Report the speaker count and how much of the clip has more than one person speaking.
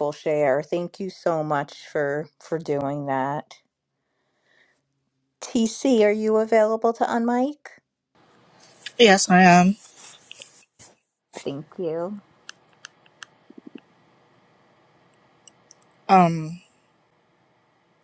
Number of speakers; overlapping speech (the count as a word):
two, no overlap